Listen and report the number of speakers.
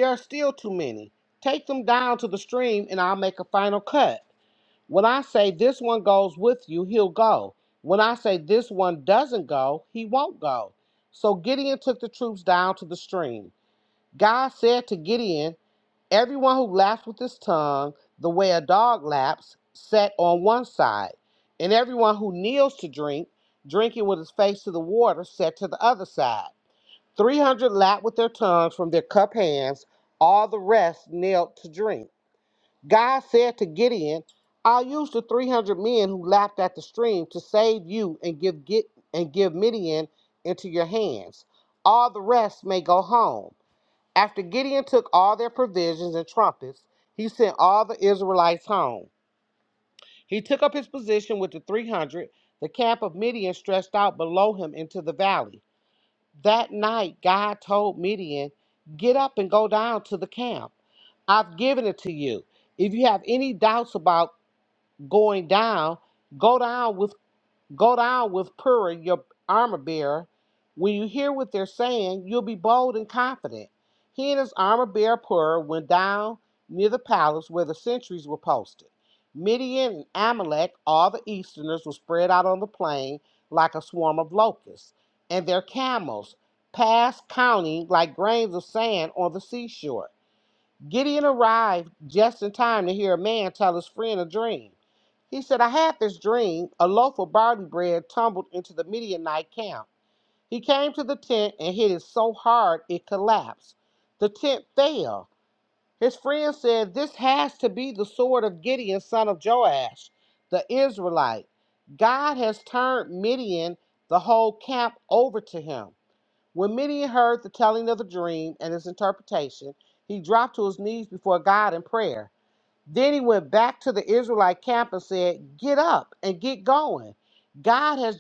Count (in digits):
1